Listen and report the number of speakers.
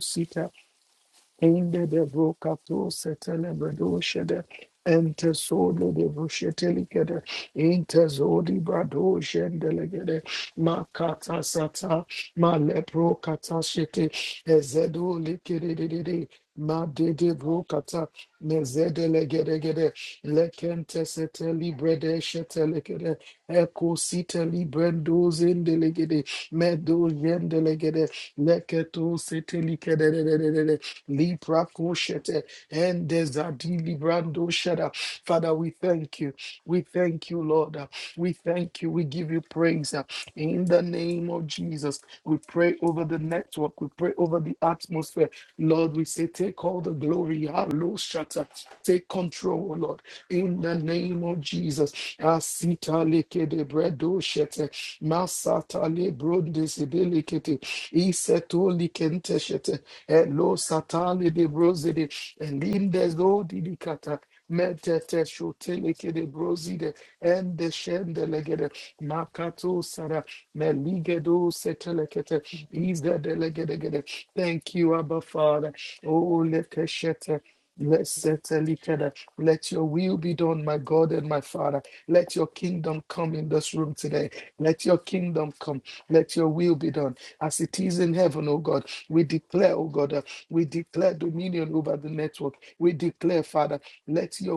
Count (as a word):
one